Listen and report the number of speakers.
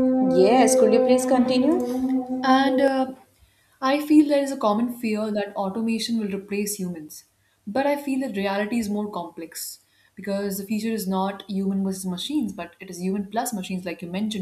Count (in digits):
2